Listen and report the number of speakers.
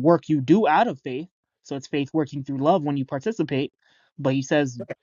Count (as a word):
one